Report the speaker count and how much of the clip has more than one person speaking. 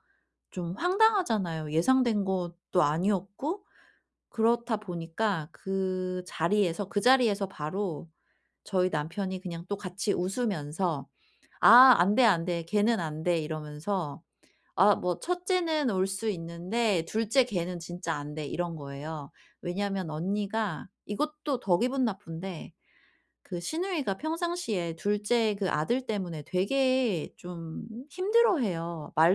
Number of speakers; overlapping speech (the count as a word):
one, no overlap